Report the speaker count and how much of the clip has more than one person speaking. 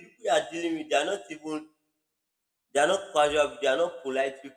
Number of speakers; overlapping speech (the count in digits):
1, no overlap